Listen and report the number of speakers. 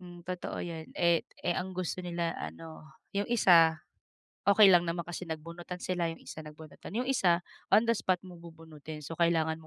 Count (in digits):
1